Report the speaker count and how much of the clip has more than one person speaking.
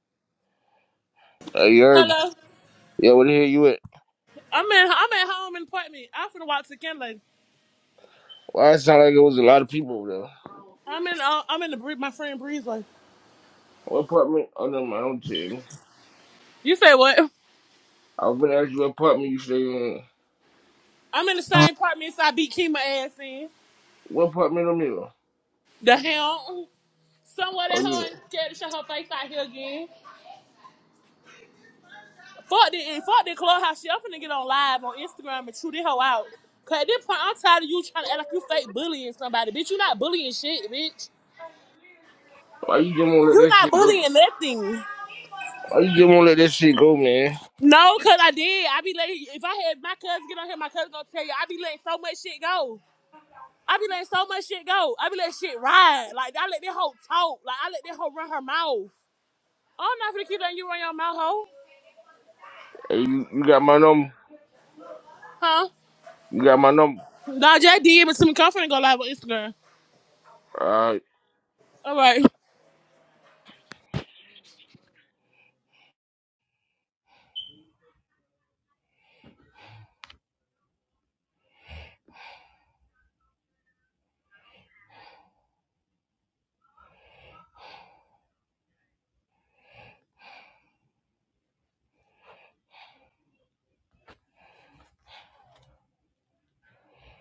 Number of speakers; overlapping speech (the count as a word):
two, about 1%